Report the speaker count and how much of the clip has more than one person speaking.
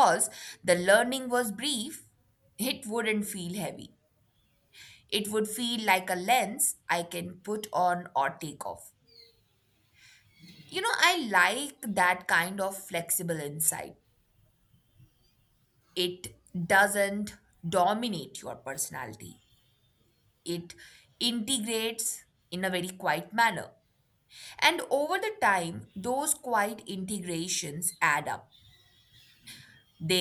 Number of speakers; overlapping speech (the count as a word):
one, no overlap